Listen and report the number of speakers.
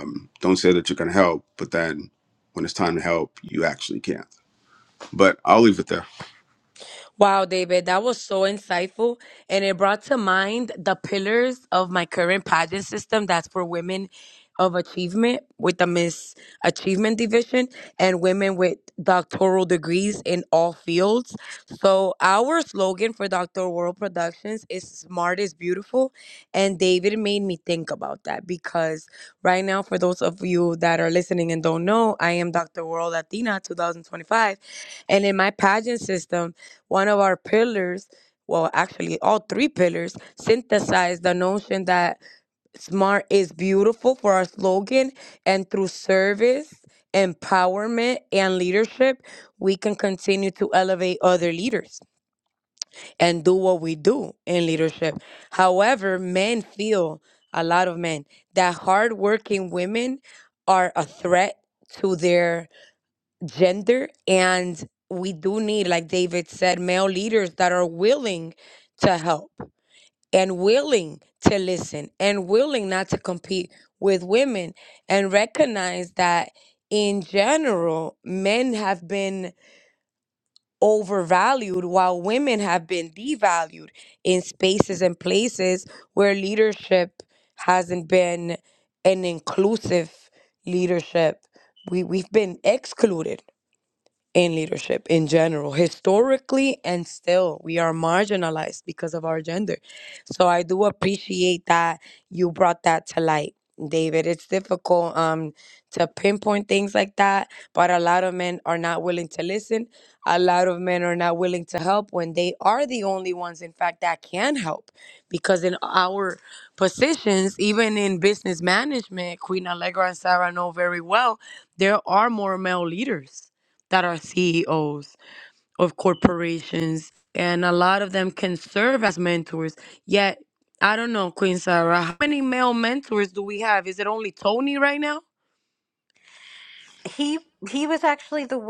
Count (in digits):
3